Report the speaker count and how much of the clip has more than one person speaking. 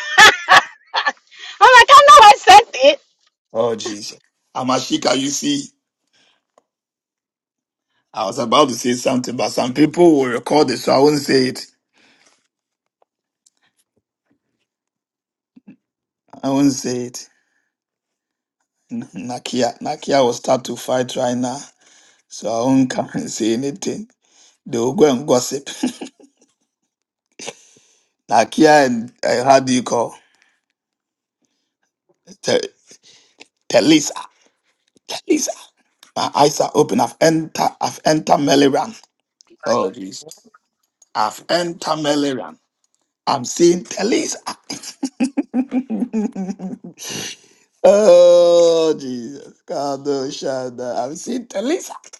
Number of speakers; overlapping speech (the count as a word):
two, no overlap